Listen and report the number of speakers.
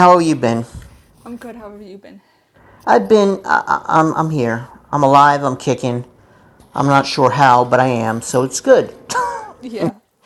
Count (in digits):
2